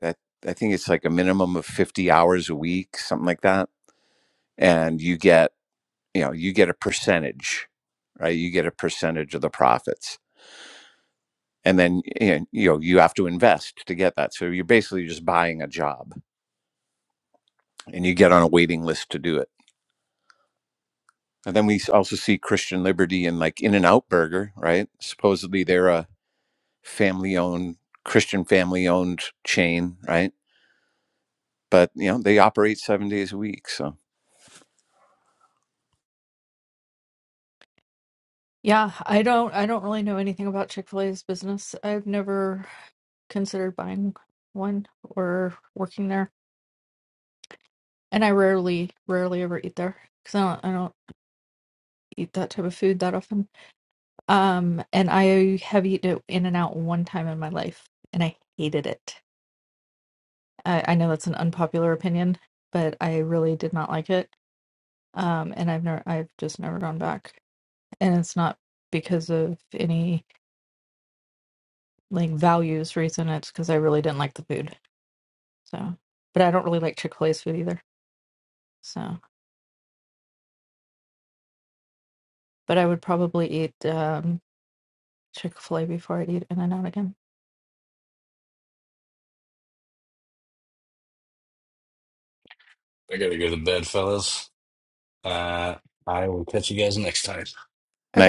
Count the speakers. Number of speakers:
3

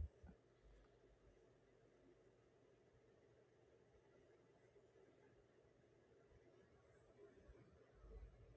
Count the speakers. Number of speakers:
0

